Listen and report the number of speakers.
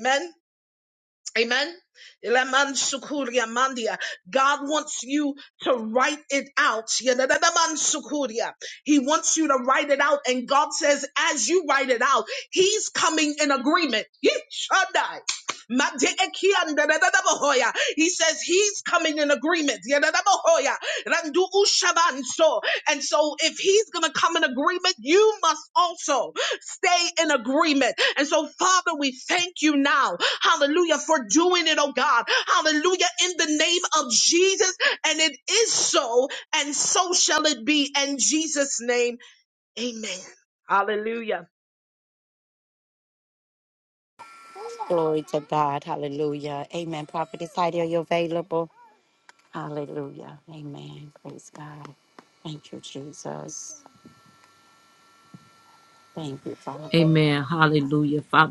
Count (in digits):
3